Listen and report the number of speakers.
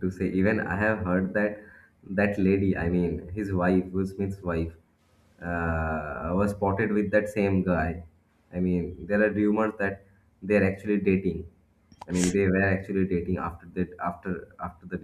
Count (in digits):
1